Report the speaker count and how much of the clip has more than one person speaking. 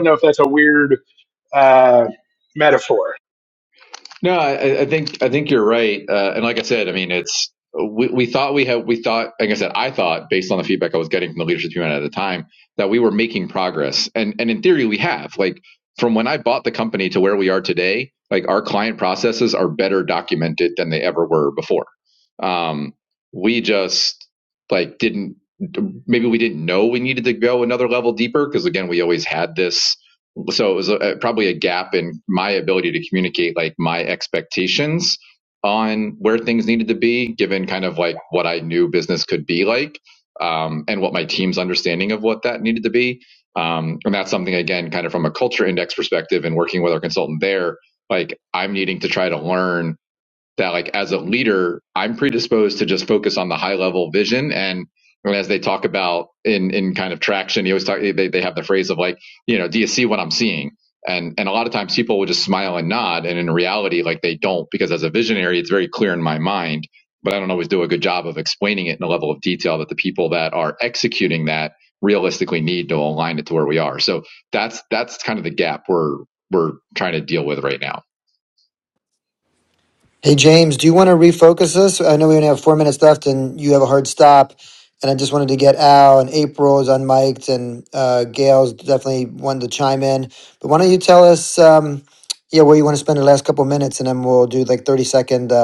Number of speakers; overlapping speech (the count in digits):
3, no overlap